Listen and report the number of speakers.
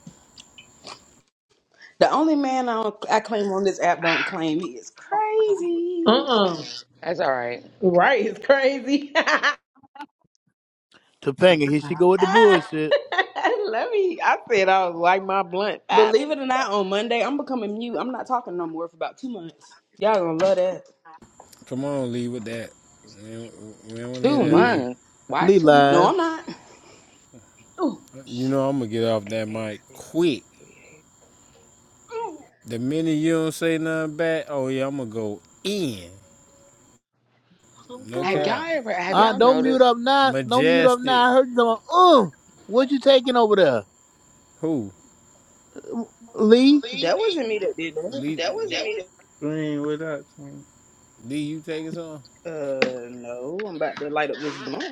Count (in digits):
6